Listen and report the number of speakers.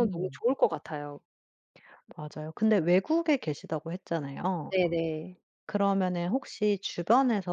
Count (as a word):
two